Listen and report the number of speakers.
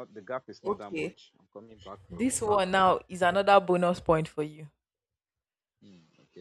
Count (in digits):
2